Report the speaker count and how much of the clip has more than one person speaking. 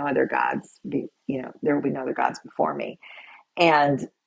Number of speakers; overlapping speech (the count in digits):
1, no overlap